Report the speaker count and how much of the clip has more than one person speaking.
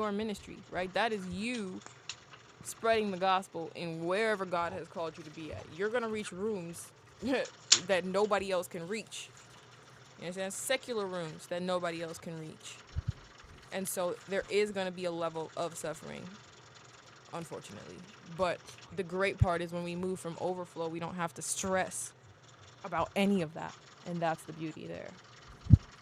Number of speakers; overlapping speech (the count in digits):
1, no overlap